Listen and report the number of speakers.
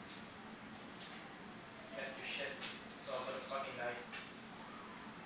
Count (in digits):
1